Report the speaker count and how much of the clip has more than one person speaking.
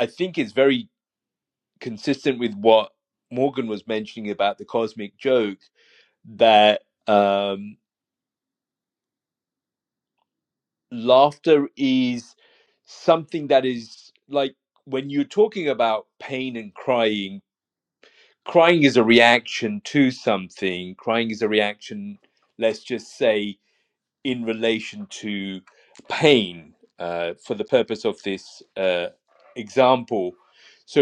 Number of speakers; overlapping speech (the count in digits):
1, no overlap